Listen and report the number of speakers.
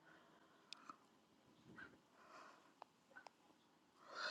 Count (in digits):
0